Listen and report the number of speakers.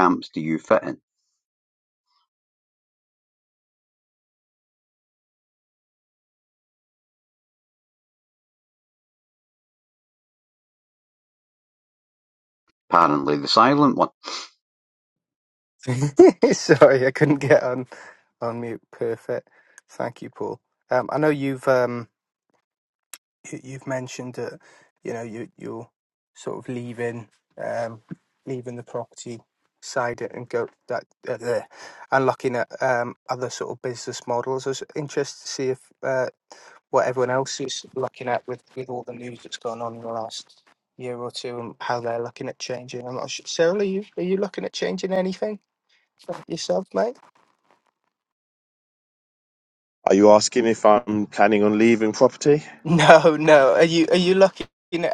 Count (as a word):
three